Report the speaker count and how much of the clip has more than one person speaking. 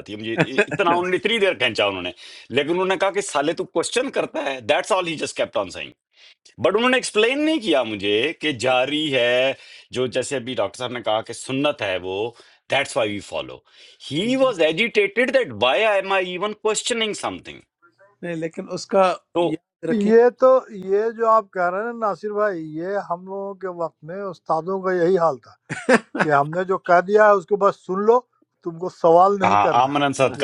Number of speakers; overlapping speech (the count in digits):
3, about 3%